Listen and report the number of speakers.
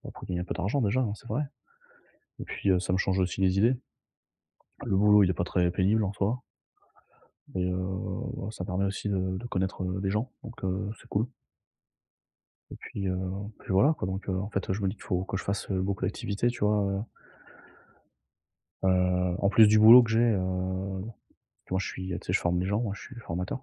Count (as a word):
one